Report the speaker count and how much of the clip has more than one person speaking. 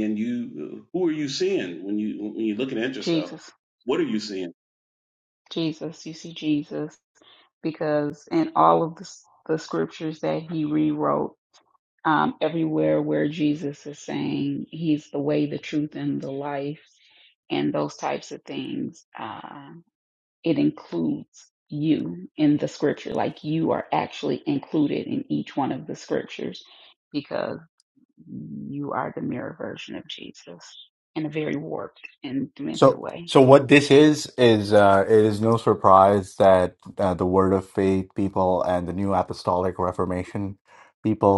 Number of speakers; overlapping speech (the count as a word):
three, about 2%